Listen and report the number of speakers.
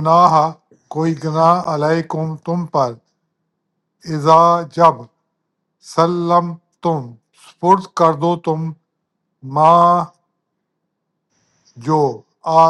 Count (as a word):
one